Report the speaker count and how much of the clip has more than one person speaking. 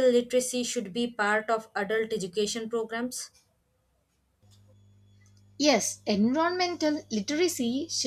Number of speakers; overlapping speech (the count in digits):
2, no overlap